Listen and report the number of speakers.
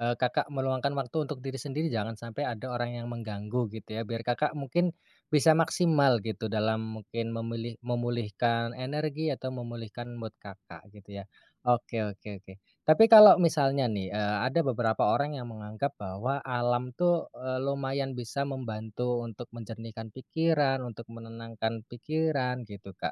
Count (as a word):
one